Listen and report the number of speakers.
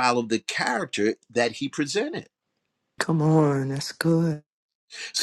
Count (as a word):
two